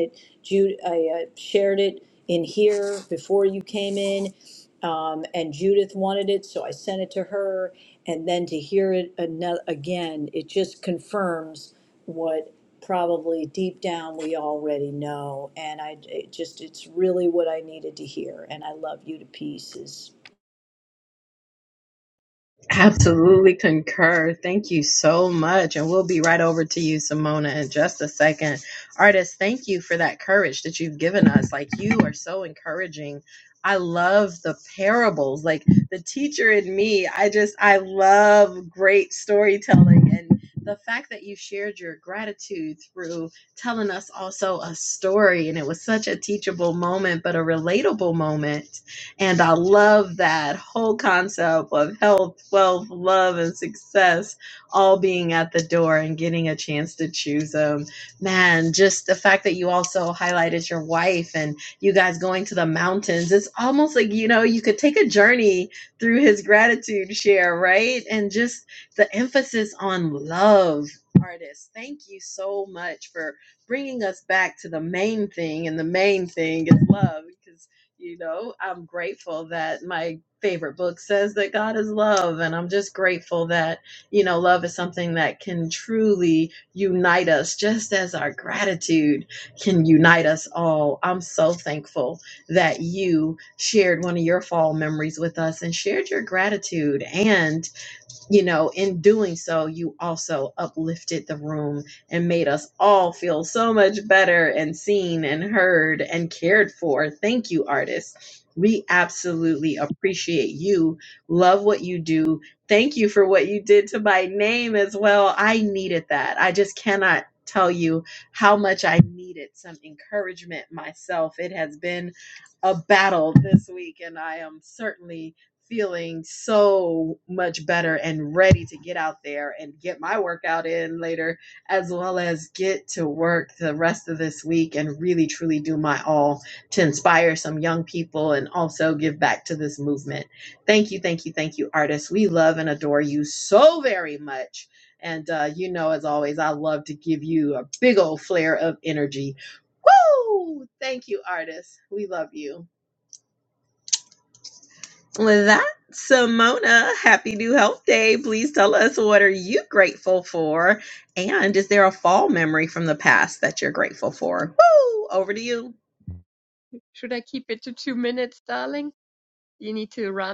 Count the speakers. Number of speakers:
3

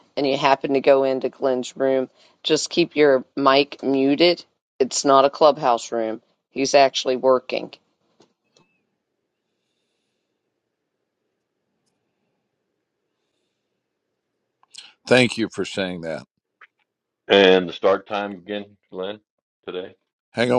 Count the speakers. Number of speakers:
3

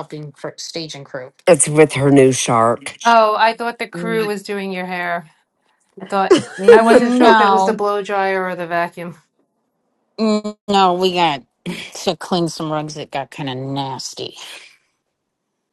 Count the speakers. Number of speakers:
3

